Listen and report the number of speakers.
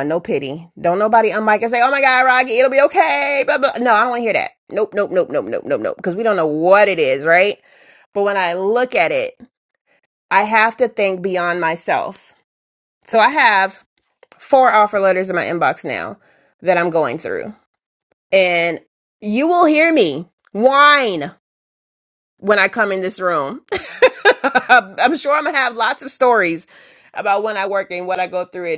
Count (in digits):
1